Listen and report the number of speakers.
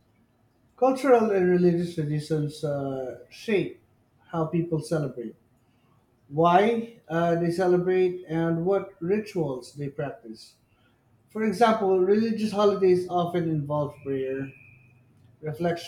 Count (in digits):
1